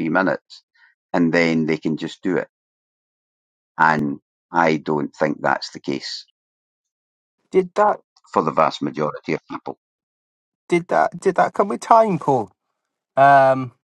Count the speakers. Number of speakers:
2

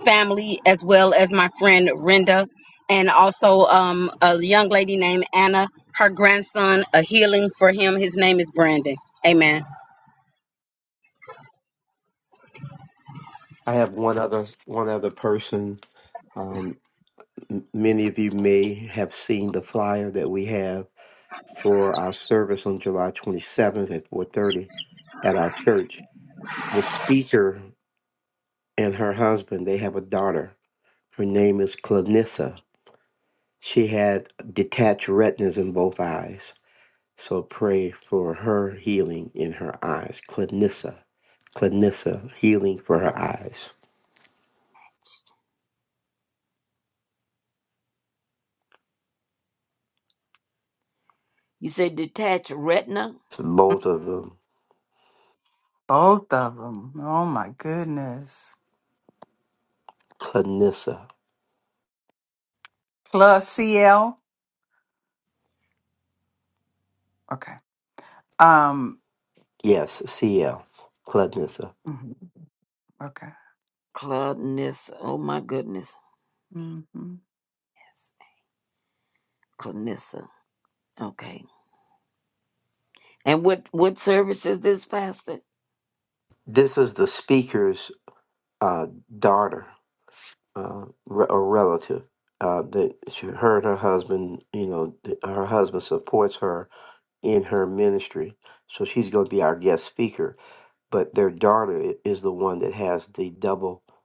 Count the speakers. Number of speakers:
4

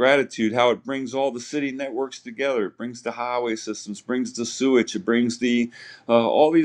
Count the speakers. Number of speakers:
1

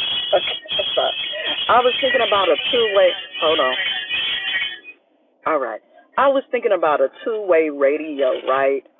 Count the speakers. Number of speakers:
1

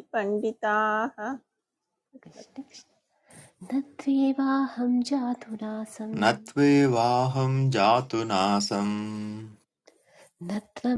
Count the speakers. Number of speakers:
3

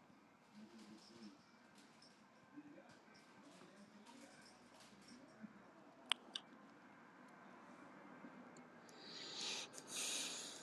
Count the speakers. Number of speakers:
0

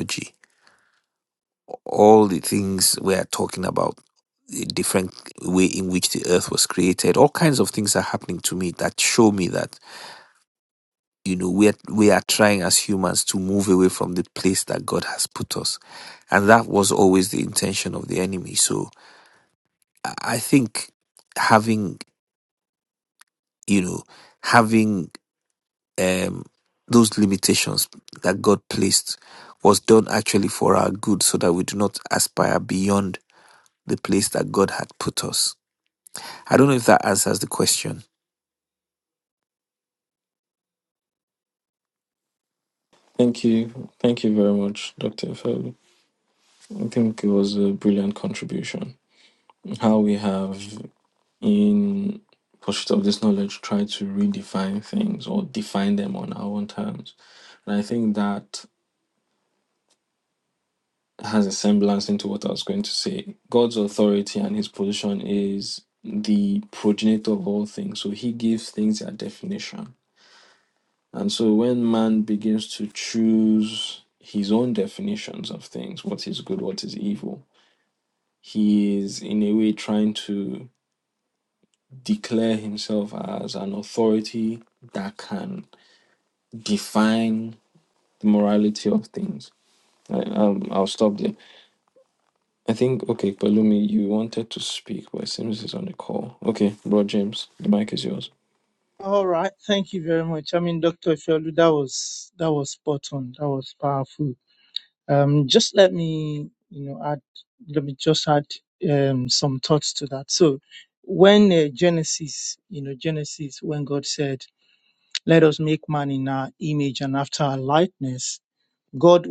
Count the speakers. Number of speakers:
3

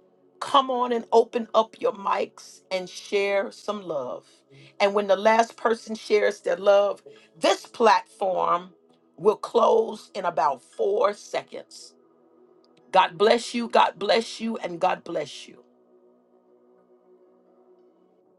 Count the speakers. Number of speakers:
1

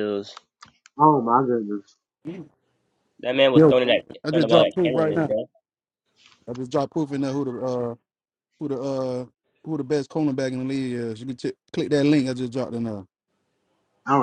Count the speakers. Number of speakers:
3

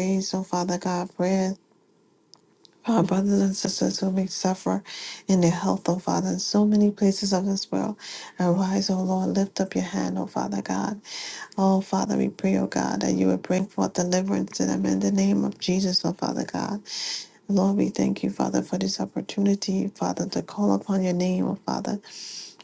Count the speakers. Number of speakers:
1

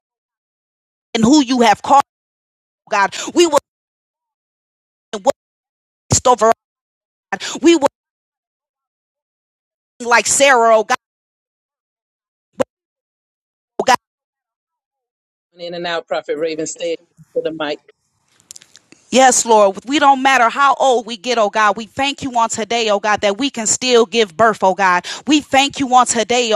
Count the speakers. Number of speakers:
2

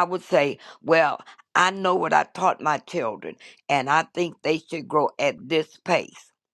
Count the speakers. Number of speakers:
1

